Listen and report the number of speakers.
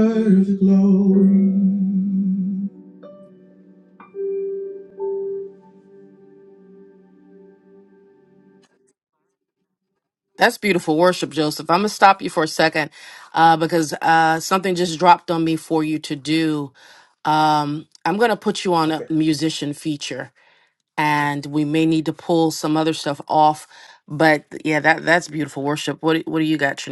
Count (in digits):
2